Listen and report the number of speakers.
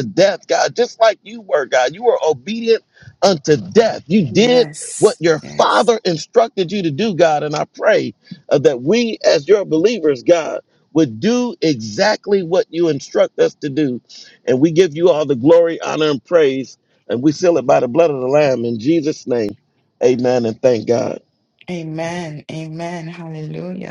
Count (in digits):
2